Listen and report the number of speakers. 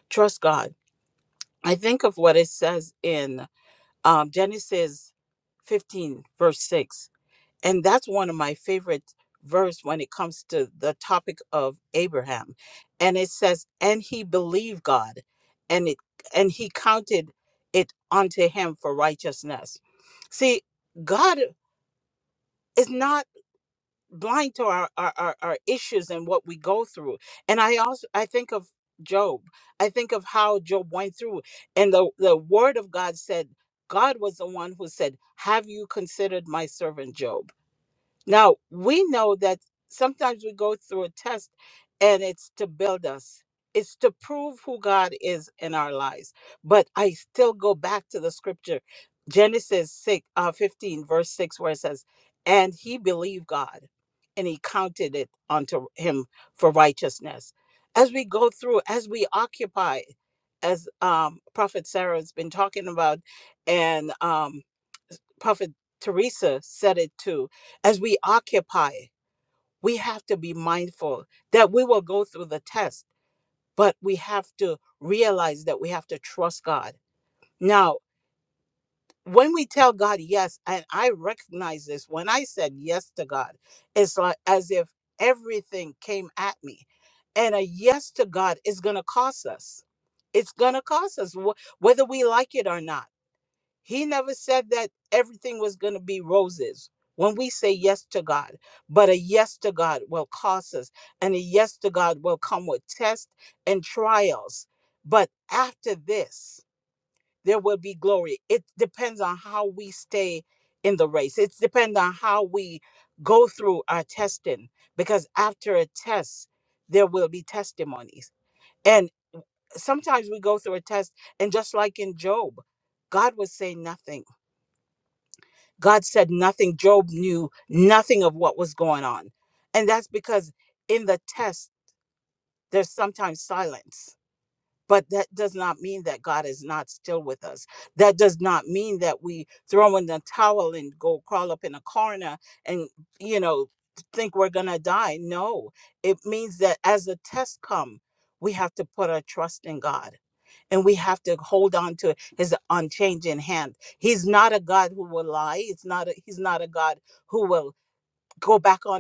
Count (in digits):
1